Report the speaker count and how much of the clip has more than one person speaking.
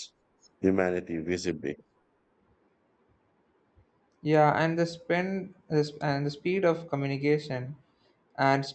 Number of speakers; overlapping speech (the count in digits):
2, no overlap